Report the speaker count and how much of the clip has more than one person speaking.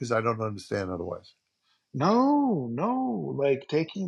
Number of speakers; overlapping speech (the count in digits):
2, no overlap